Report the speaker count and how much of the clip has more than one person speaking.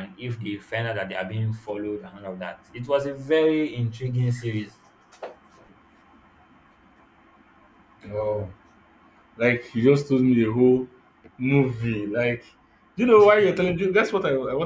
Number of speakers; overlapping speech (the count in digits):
2, no overlap